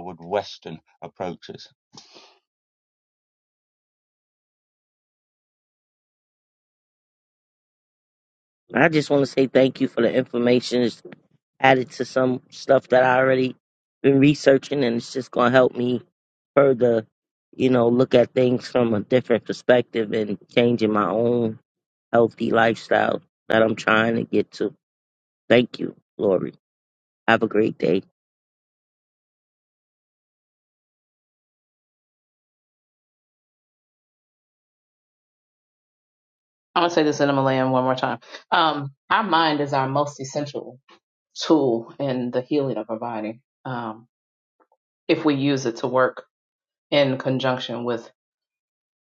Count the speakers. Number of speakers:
3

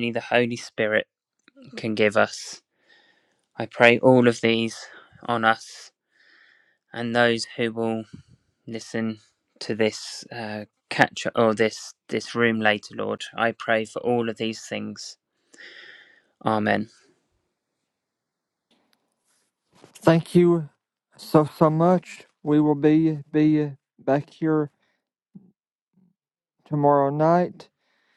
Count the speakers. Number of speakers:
2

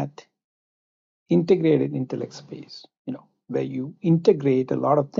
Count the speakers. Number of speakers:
1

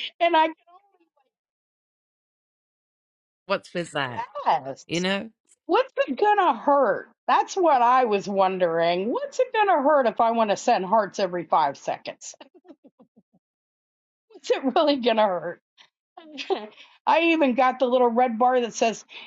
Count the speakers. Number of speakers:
2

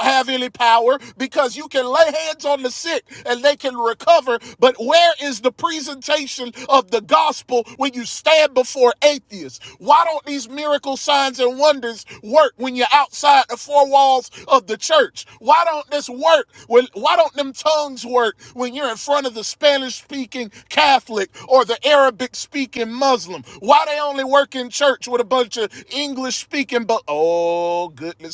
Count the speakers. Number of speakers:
1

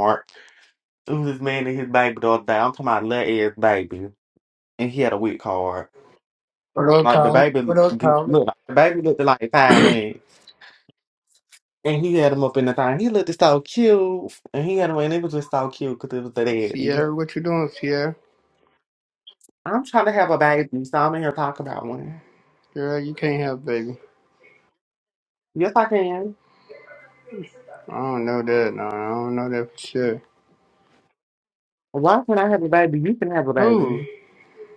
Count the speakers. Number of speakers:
2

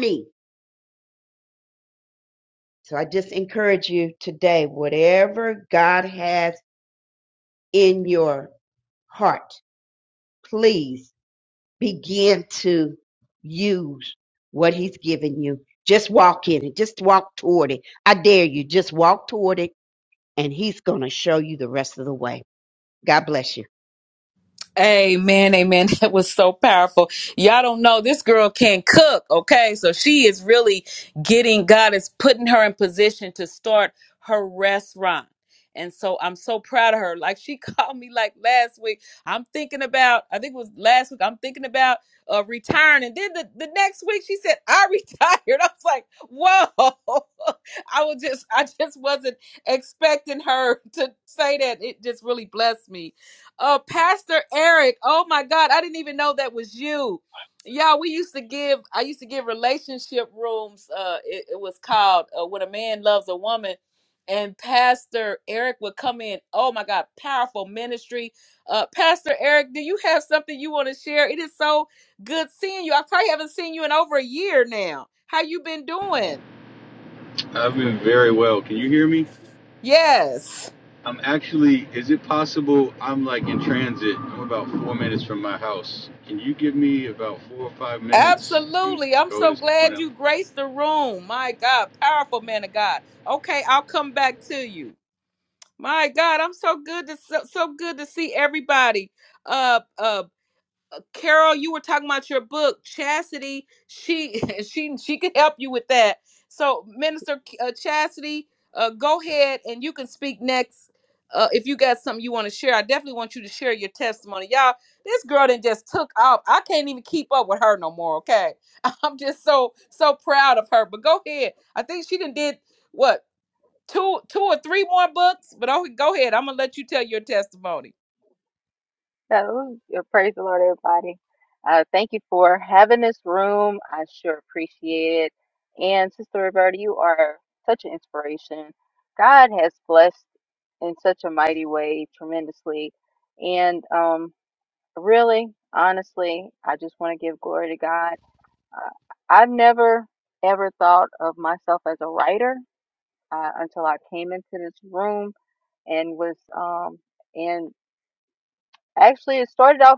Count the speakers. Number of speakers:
4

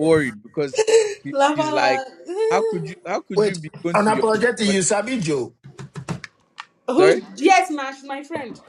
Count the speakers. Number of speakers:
3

